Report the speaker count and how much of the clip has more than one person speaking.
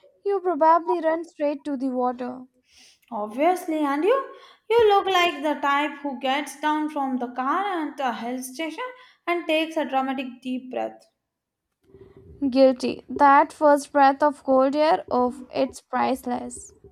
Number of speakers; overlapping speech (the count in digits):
2, no overlap